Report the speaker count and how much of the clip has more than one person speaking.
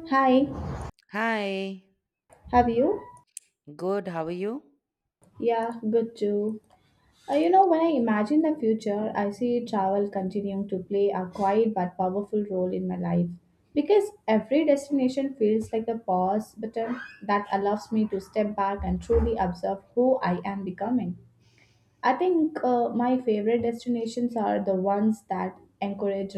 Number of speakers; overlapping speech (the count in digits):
2, no overlap